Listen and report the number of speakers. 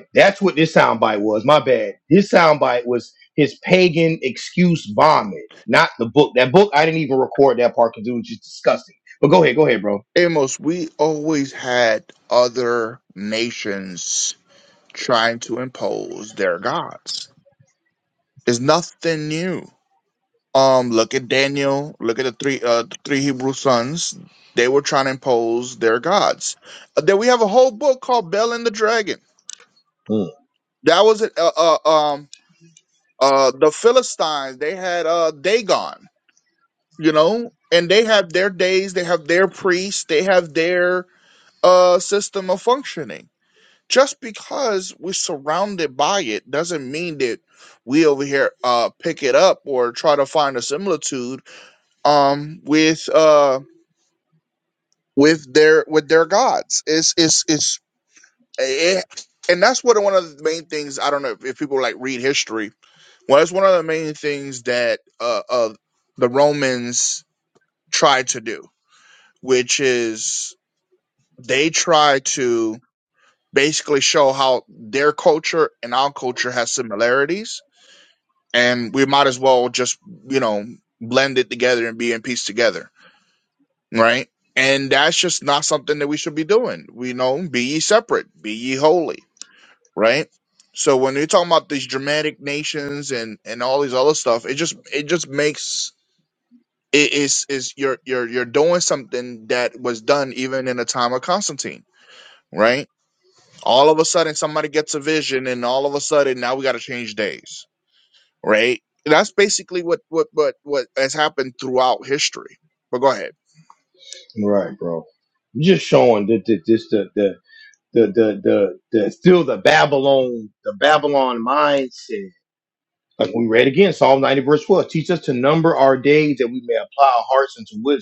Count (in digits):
2